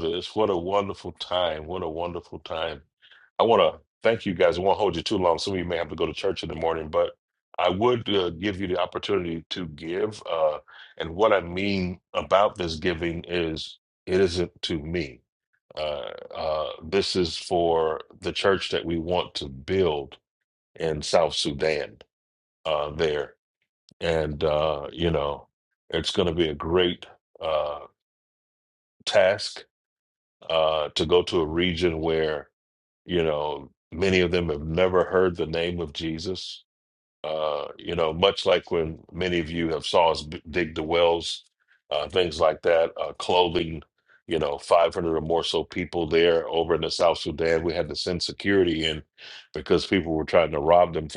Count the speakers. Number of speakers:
one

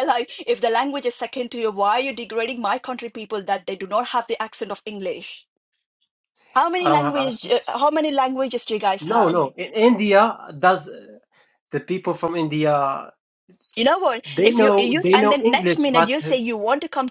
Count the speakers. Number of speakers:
two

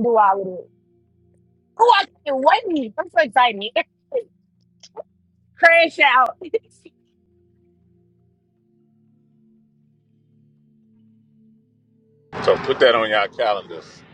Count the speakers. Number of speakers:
two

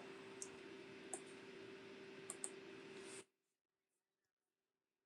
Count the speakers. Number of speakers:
zero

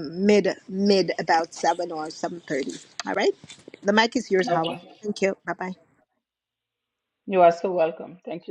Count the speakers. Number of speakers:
two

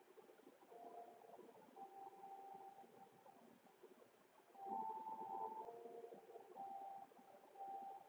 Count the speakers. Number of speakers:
zero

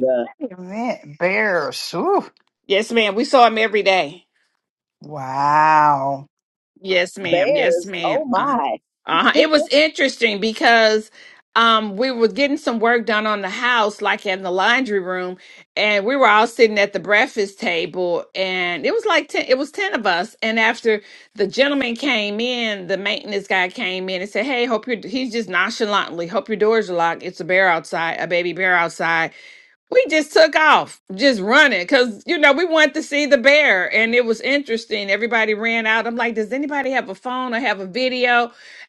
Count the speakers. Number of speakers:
three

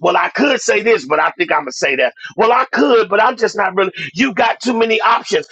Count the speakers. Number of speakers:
one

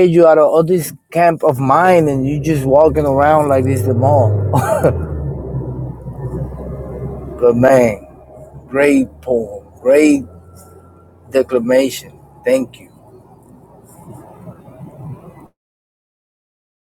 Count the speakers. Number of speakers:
one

